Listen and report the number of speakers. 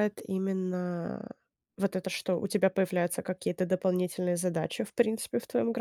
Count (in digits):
1